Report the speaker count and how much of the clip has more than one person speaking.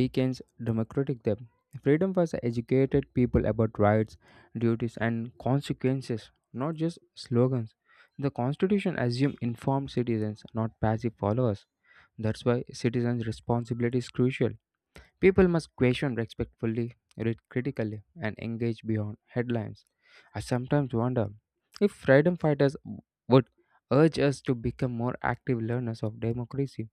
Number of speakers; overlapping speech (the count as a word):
one, no overlap